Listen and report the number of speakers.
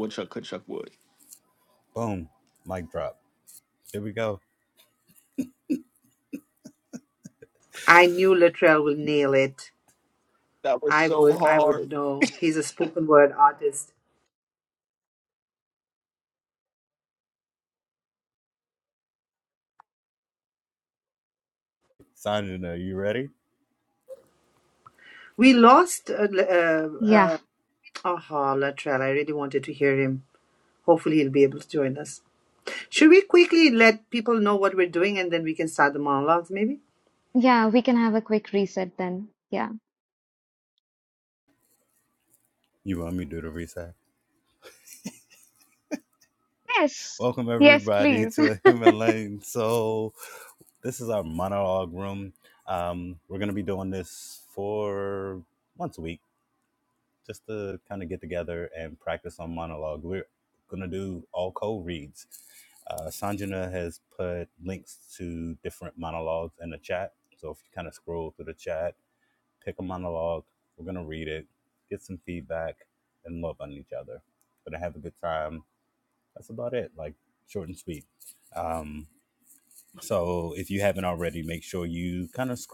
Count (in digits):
4